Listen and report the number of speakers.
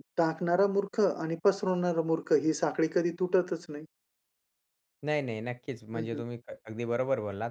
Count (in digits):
2